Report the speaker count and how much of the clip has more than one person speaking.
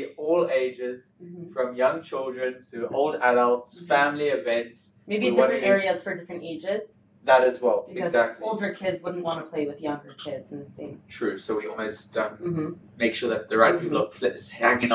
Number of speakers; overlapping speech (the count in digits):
2, about 11%